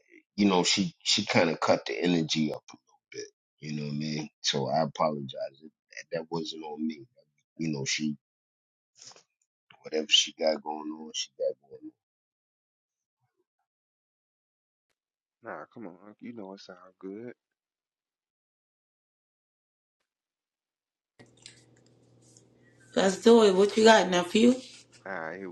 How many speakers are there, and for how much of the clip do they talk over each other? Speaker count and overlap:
3, no overlap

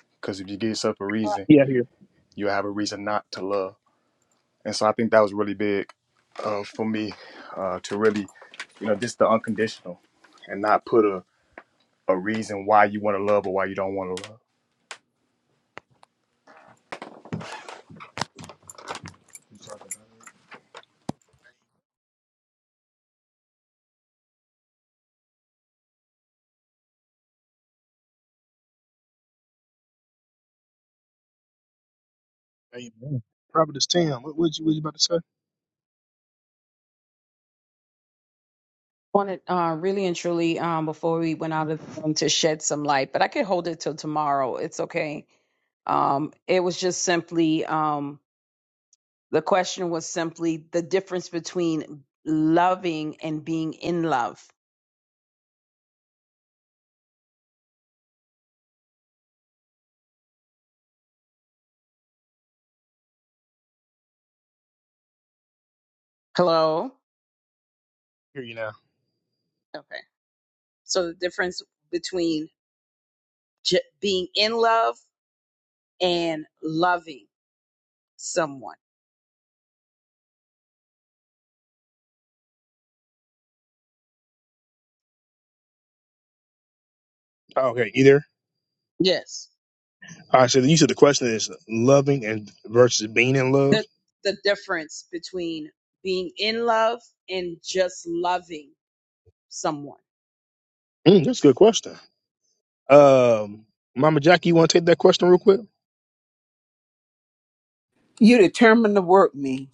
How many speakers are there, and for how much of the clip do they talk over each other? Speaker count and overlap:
4, under 1%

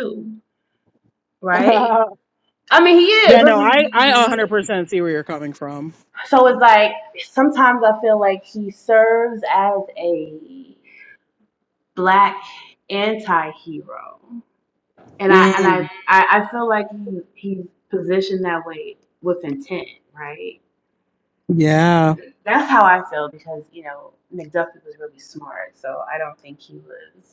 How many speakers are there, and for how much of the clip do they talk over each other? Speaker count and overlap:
2, about 5%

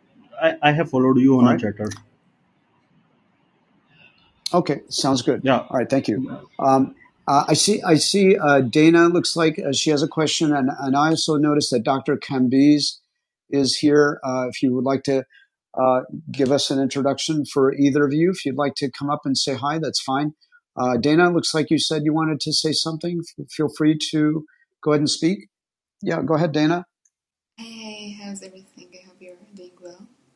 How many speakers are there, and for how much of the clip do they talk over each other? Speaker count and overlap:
3, about 2%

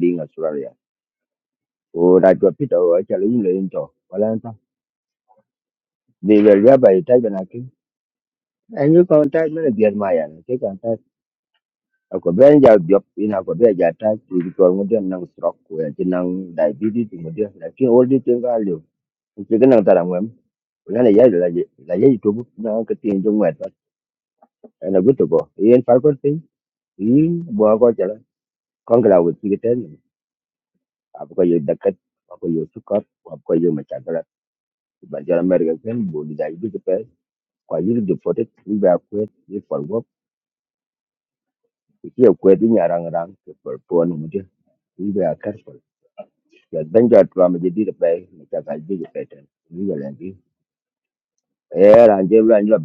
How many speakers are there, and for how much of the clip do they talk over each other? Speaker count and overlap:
1, no overlap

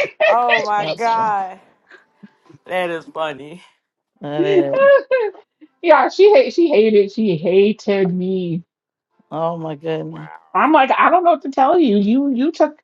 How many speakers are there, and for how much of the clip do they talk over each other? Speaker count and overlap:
3, about 5%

